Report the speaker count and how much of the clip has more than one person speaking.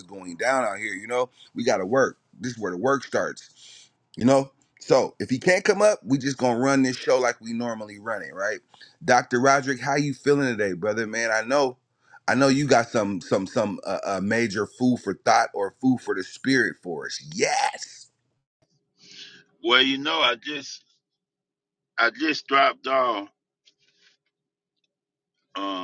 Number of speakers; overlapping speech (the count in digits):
2, no overlap